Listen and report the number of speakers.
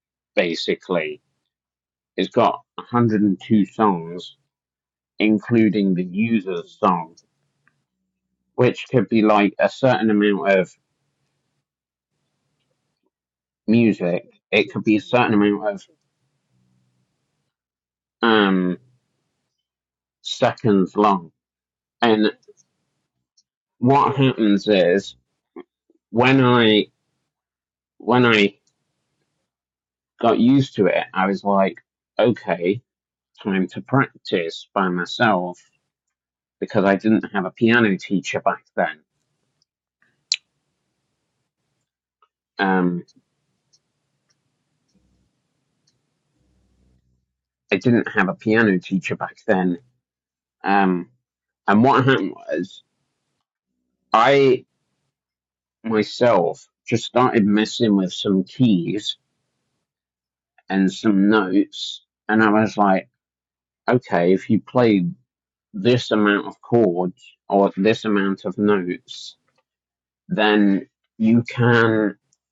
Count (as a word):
one